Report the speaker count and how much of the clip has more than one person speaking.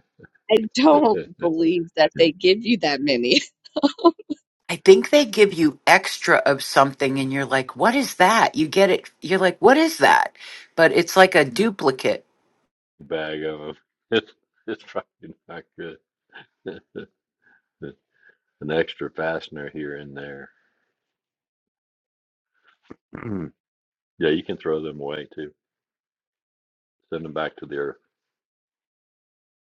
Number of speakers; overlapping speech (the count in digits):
3, no overlap